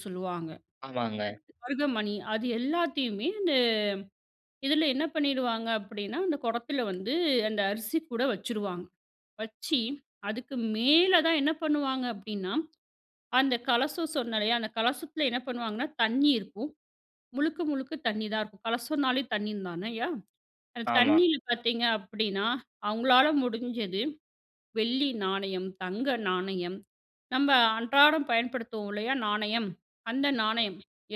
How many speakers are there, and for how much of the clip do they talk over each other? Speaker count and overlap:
two, about 1%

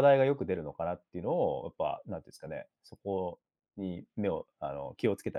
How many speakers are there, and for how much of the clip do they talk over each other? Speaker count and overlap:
one, no overlap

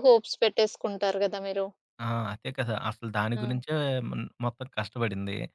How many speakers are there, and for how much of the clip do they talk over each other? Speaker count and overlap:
two, about 4%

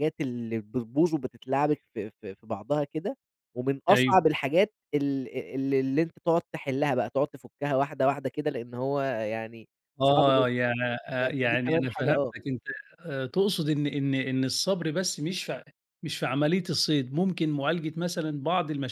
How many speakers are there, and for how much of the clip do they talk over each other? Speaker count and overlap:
two, about 9%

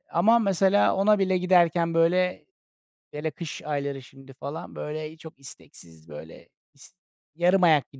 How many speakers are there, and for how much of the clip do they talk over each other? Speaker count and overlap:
one, no overlap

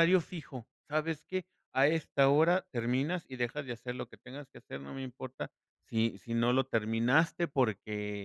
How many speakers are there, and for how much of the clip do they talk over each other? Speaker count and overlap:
one, no overlap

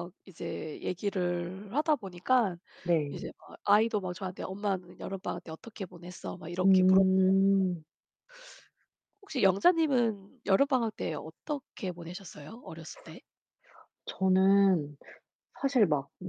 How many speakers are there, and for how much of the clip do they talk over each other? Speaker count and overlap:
two, about 5%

